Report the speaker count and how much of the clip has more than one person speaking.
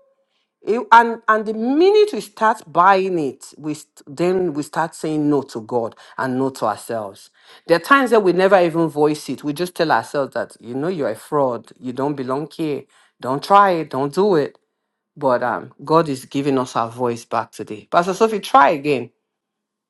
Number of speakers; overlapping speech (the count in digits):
1, no overlap